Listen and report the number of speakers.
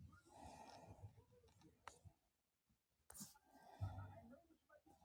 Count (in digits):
0